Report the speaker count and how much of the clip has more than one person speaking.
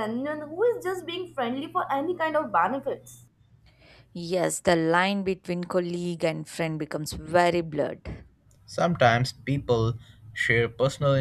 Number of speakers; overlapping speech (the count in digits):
3, no overlap